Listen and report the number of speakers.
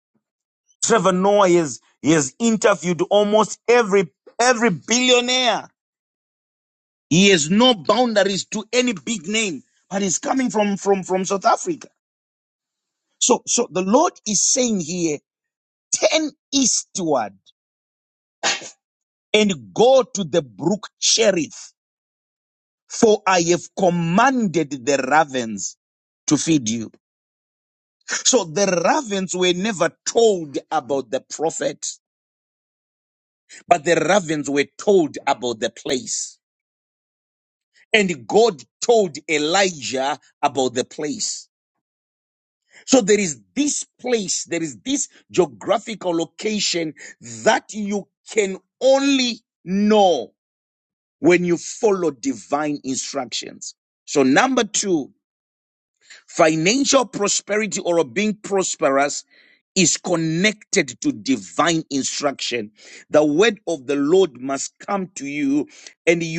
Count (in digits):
1